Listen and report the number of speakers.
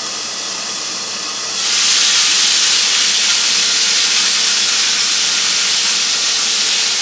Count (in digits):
0